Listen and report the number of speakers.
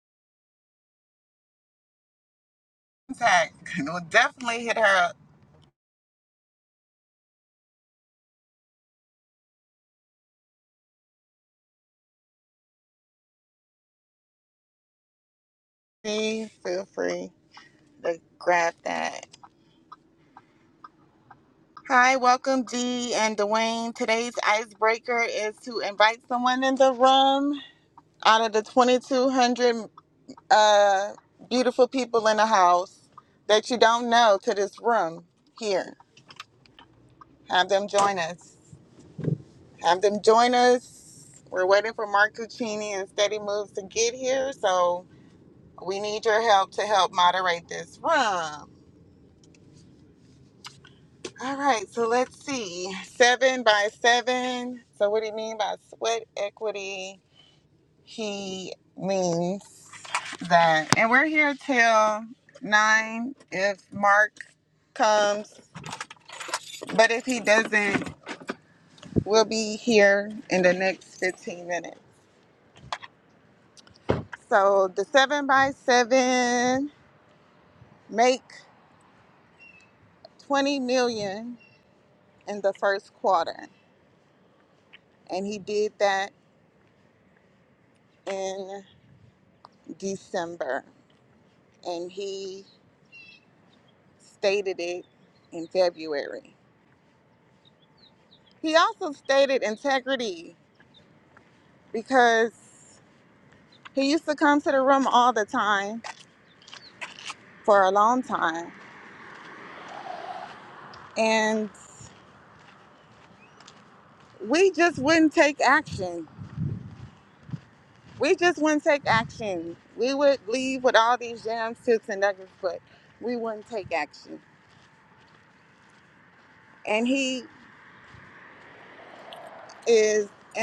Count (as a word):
one